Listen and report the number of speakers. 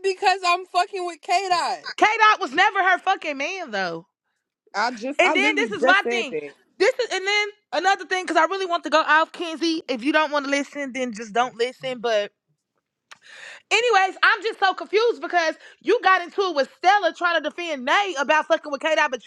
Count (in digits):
3